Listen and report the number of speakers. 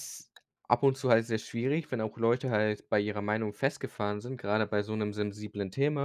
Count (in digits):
1